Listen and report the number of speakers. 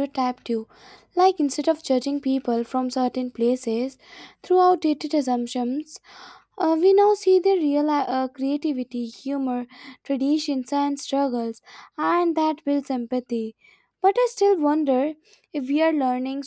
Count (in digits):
1